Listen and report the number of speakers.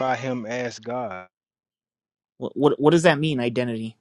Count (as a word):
two